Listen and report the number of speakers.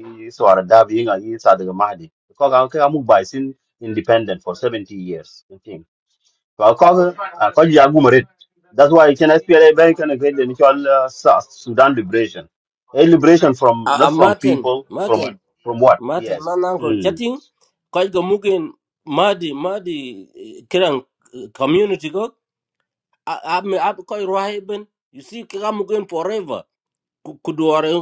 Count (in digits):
2